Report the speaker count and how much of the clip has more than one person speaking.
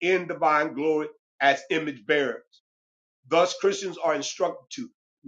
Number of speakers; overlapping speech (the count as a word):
one, no overlap